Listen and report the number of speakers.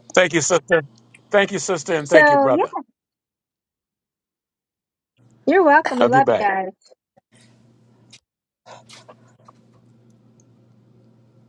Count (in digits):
2